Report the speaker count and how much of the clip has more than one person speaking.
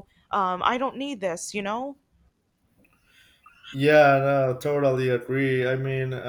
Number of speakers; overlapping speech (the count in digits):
2, no overlap